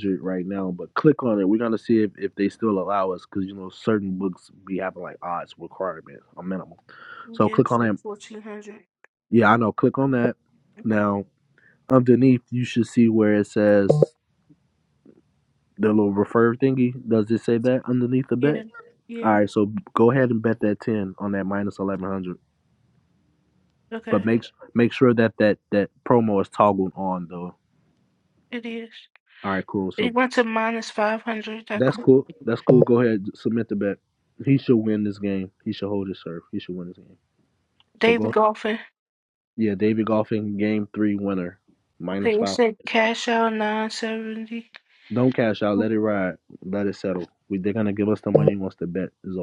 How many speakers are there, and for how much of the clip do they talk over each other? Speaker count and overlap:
2, about 5%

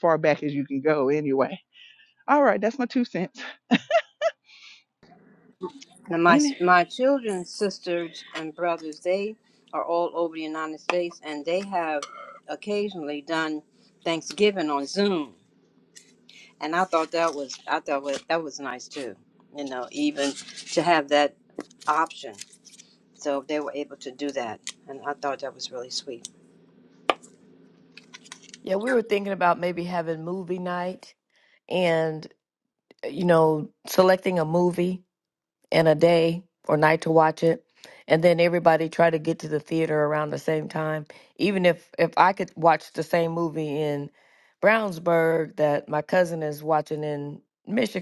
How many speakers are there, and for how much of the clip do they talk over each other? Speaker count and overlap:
3, about 1%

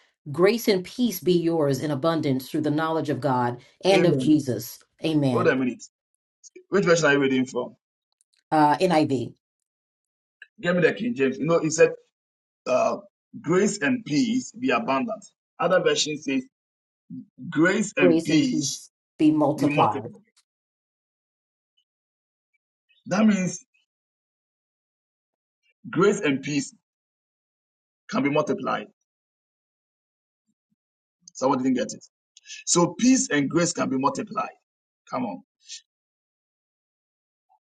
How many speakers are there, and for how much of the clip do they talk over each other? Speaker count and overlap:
2, about 5%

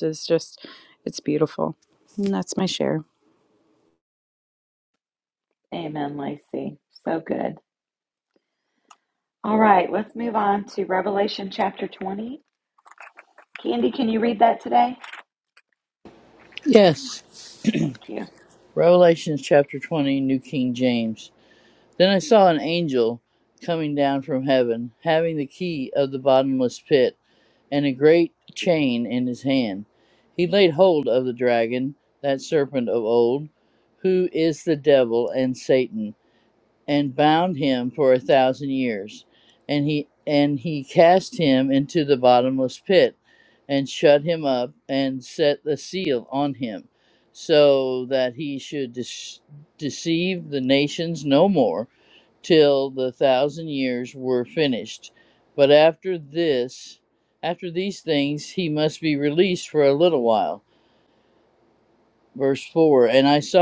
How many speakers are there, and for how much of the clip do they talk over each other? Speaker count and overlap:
3, no overlap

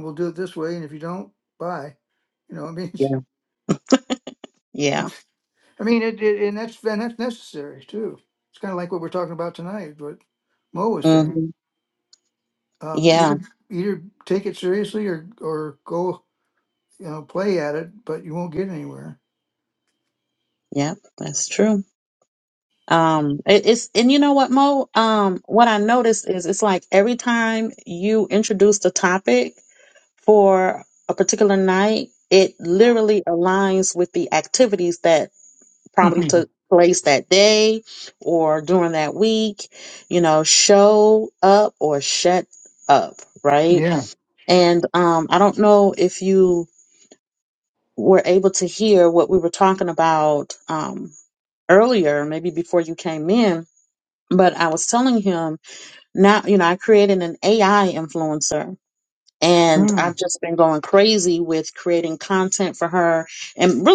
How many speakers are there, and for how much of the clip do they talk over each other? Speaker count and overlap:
2, about 2%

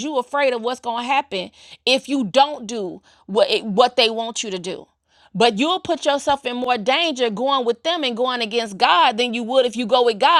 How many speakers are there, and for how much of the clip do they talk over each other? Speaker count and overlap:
1, no overlap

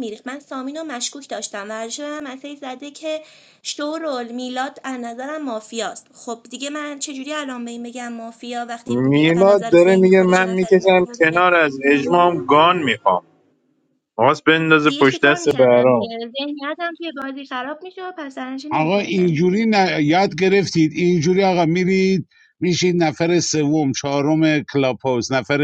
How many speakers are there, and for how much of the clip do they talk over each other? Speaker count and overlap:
3, about 17%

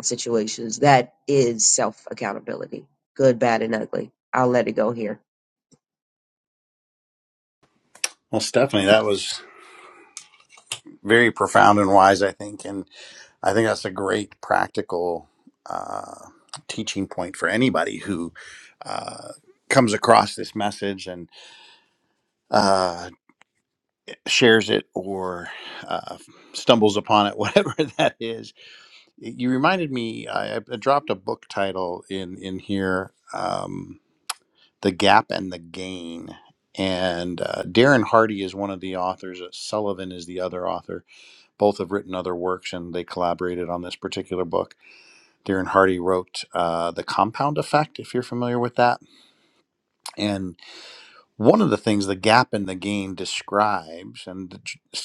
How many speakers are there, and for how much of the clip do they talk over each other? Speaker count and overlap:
2, no overlap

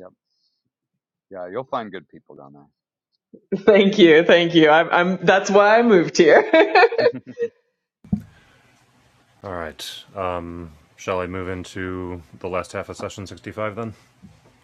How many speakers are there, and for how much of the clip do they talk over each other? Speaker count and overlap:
3, no overlap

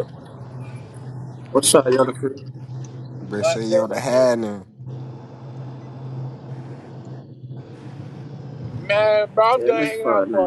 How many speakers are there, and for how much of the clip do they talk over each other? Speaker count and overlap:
3, about 18%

